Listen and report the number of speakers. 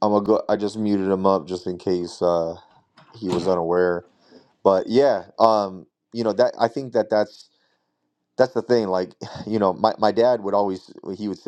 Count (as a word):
one